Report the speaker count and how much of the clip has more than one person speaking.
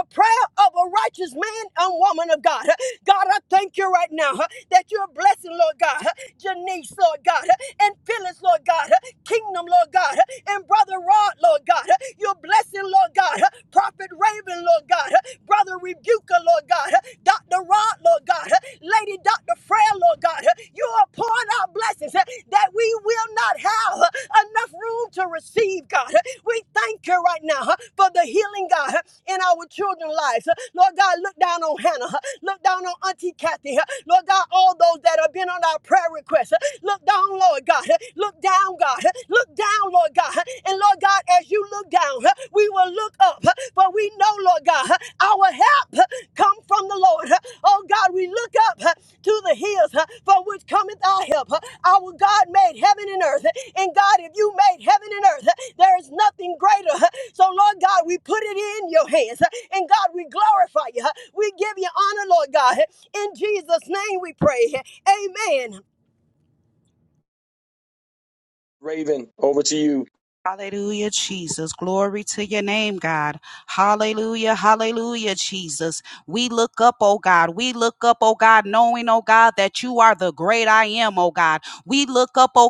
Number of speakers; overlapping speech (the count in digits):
3, no overlap